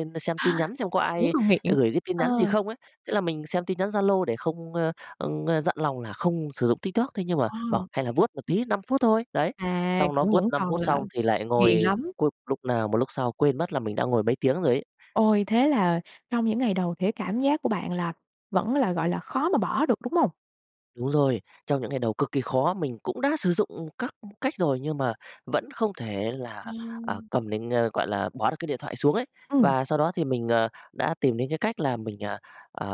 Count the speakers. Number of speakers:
2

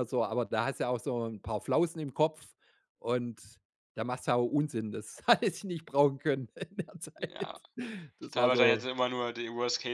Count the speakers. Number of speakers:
2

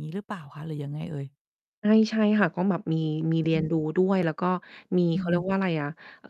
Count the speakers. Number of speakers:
2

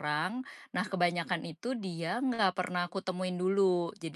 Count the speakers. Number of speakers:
1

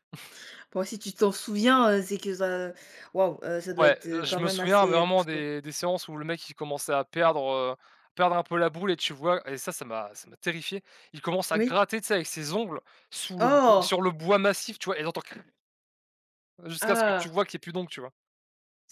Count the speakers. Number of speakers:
2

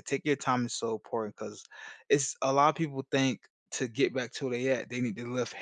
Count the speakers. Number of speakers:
1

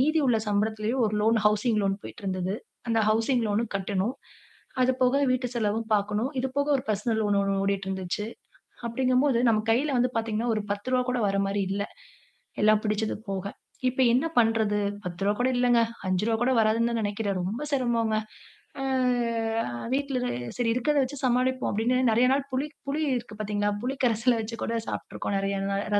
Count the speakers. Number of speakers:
1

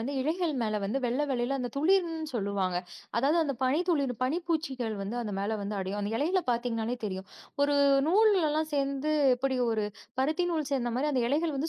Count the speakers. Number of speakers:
1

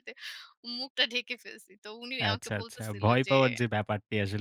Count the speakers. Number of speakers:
2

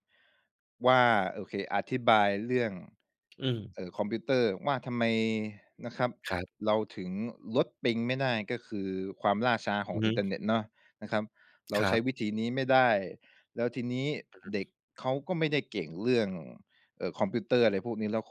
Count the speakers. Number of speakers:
2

